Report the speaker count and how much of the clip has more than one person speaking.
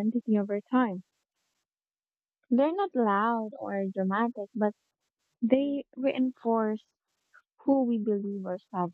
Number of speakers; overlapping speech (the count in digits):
1, no overlap